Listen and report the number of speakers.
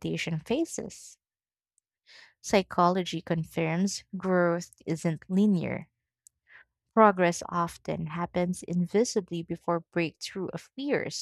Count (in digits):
1